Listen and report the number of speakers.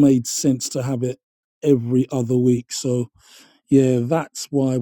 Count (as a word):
one